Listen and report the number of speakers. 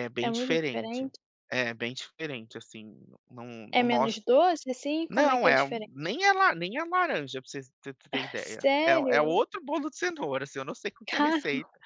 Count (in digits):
2